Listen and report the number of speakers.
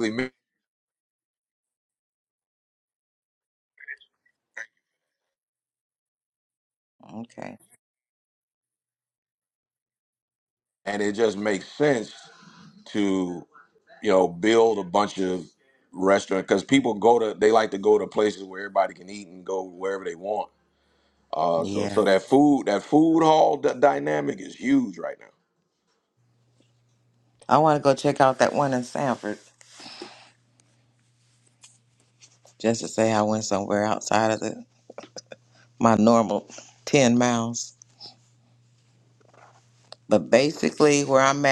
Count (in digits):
2